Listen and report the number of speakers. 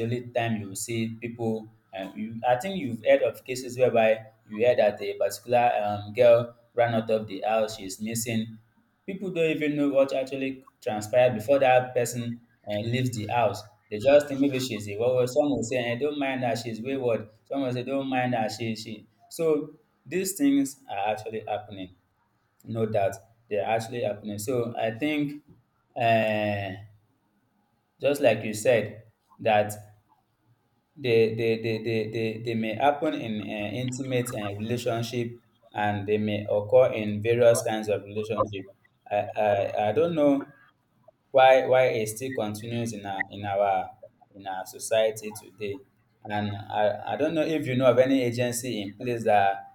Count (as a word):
one